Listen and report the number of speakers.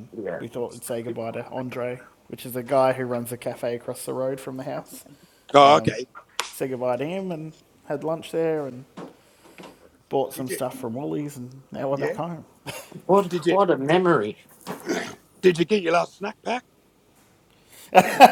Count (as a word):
three